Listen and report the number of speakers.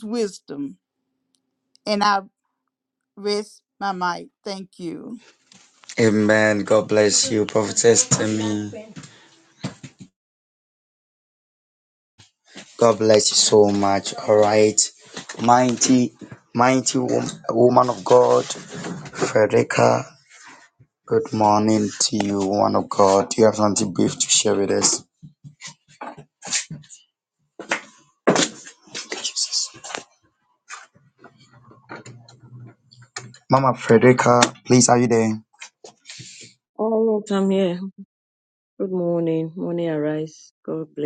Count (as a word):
three